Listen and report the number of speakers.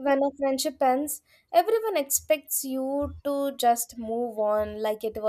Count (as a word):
one